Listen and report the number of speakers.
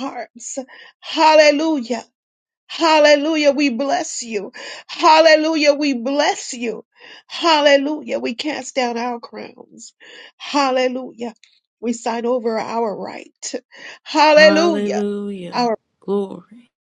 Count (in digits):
2